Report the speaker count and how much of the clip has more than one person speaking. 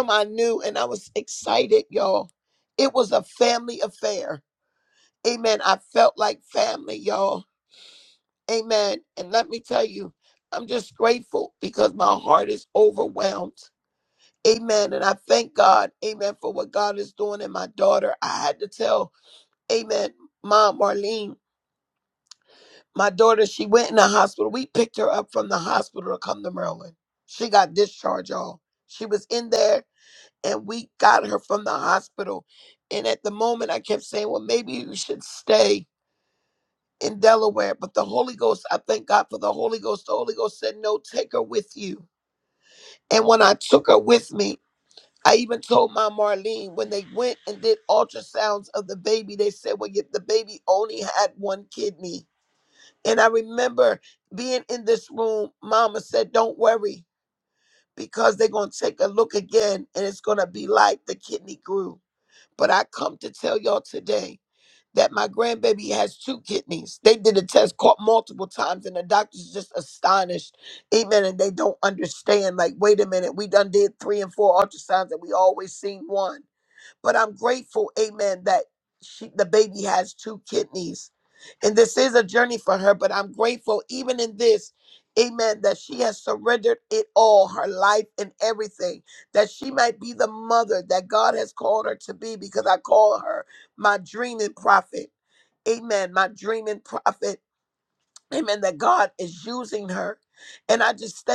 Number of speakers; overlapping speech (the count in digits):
1, no overlap